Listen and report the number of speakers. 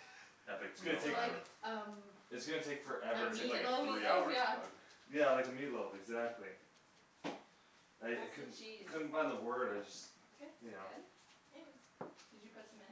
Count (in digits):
4